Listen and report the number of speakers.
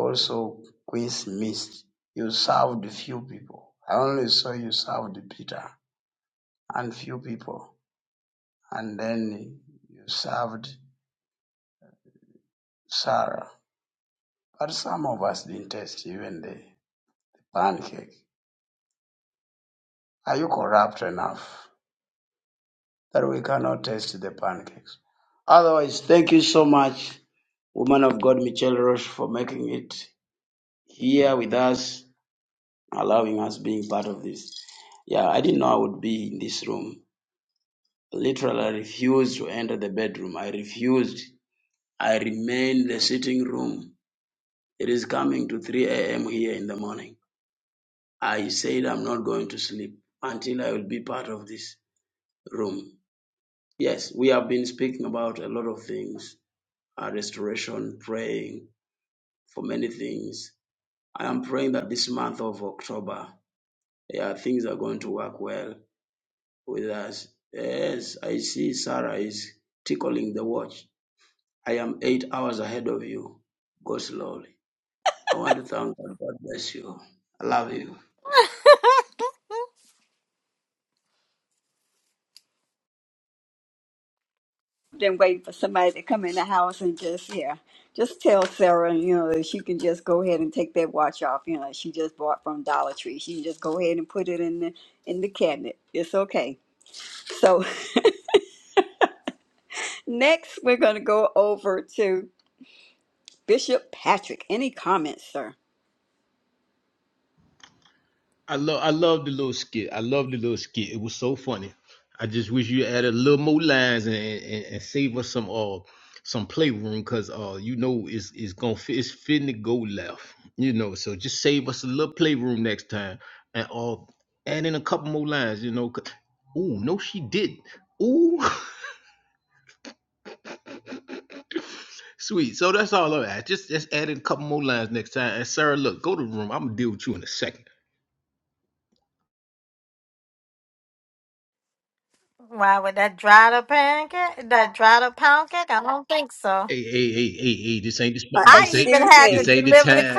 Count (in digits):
4